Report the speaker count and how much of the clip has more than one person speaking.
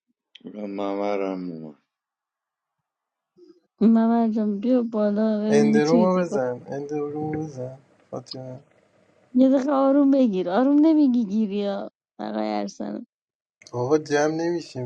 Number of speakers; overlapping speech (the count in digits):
3, about 6%